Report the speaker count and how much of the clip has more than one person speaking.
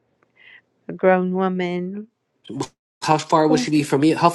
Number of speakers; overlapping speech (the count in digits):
2, no overlap